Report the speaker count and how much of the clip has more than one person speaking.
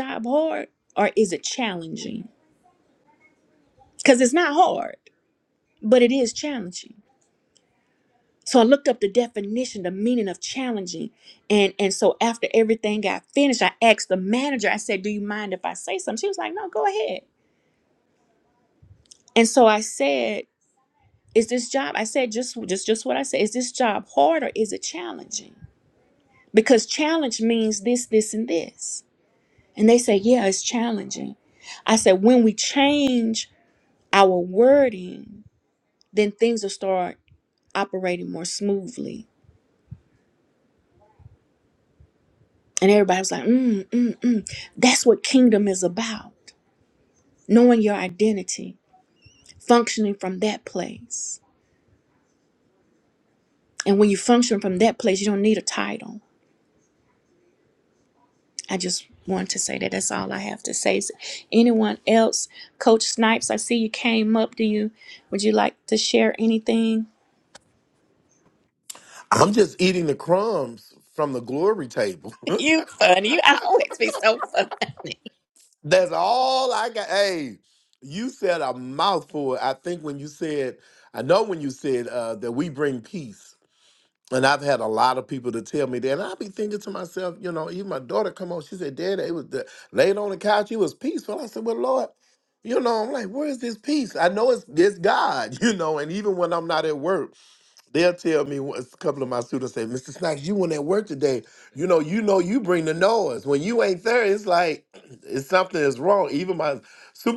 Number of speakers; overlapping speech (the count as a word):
two, no overlap